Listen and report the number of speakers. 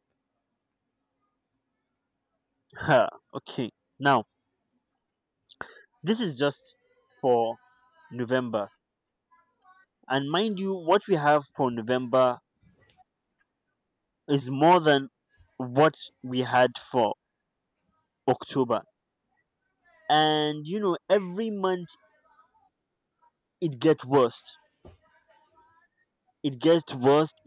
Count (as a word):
one